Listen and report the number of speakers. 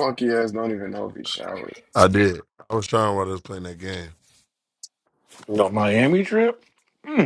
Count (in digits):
3